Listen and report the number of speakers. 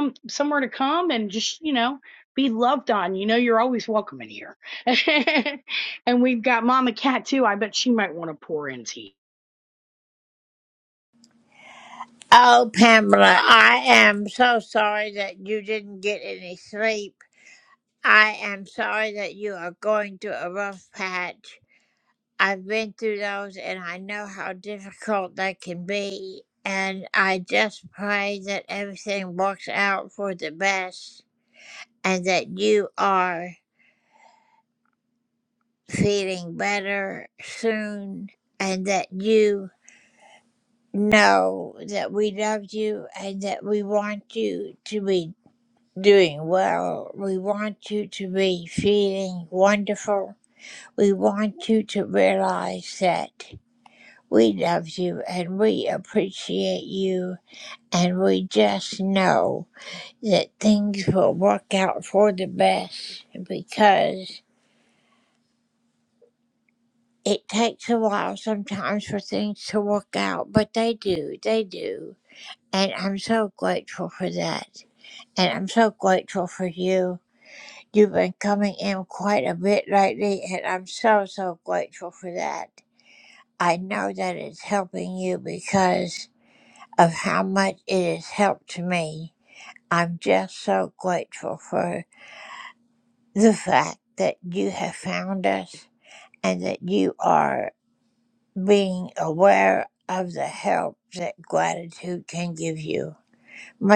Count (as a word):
two